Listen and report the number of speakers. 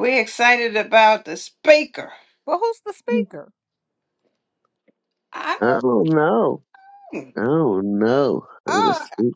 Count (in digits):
3